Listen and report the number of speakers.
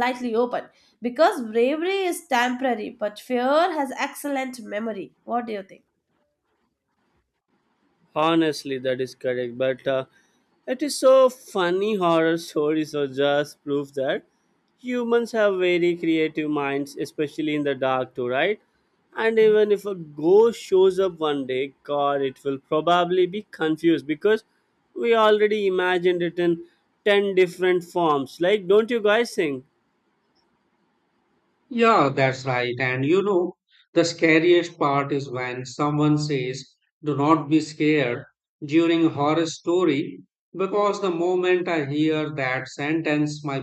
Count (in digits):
3